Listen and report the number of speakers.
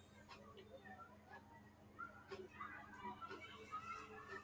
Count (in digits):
0